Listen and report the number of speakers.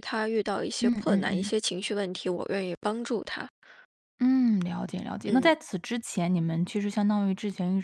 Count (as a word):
two